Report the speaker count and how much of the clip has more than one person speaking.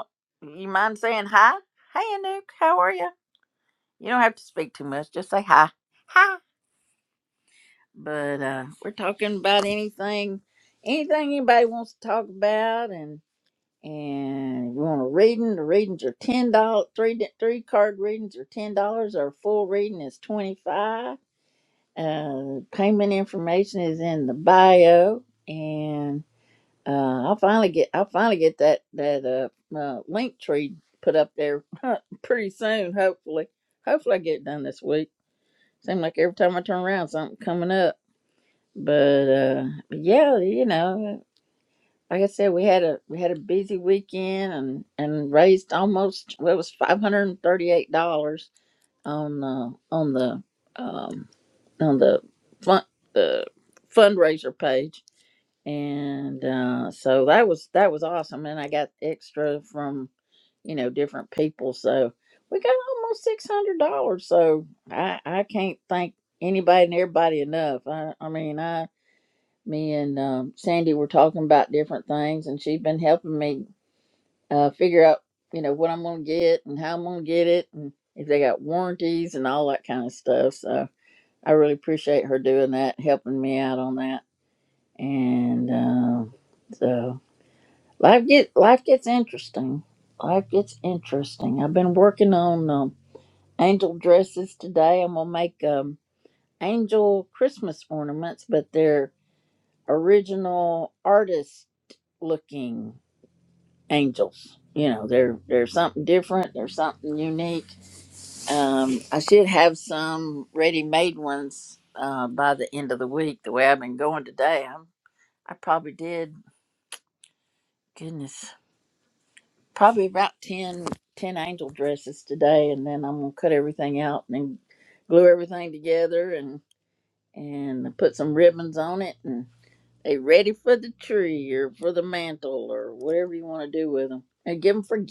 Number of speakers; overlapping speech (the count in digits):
1, no overlap